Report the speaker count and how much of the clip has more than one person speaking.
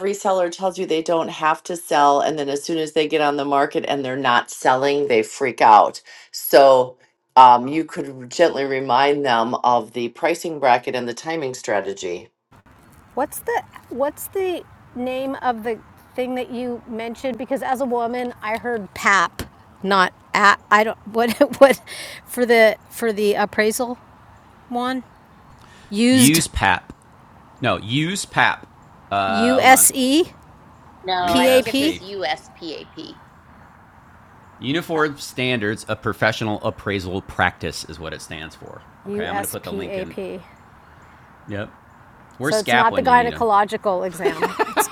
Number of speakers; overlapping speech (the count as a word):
four, about 8%